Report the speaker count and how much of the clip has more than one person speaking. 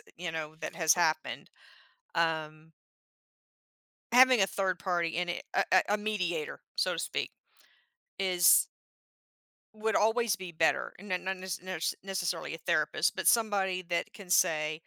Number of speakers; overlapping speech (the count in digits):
1, no overlap